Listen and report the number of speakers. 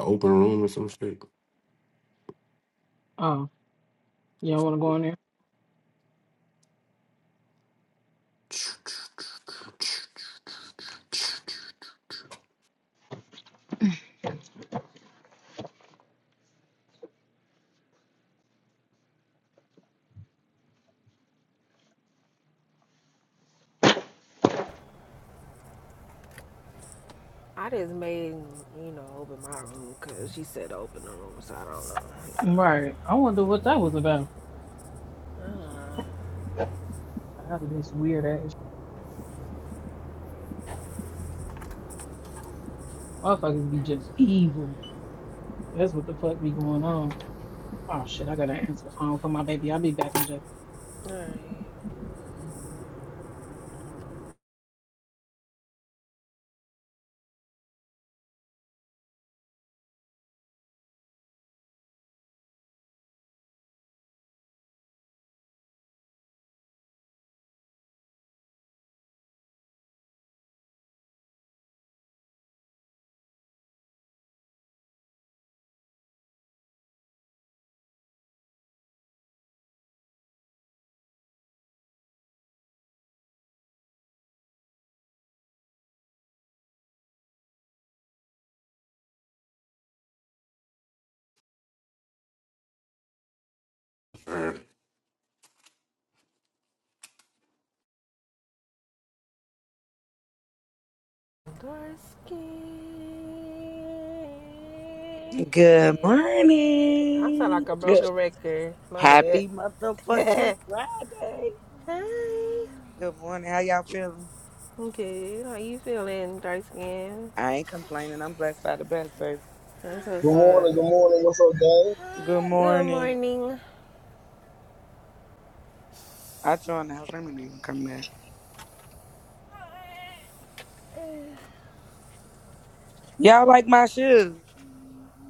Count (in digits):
5